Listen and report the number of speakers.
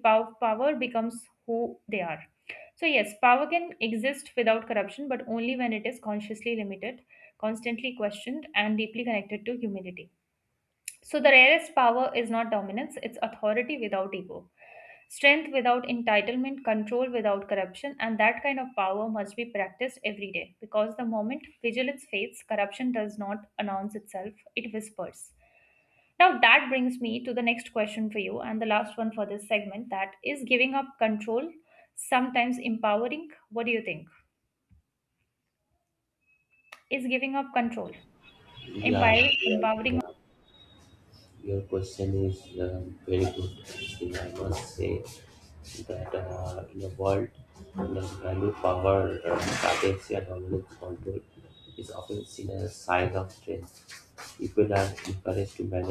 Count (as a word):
two